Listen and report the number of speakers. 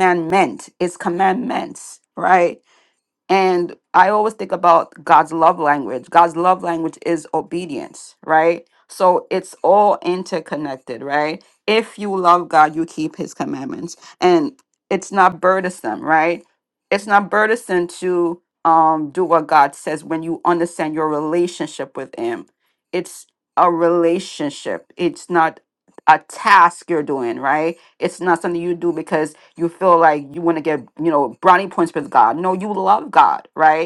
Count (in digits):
1